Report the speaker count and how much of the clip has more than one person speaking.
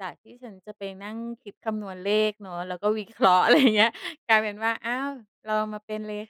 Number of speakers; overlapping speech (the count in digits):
1, no overlap